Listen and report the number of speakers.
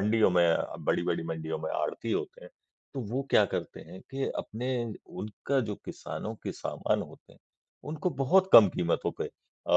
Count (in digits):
1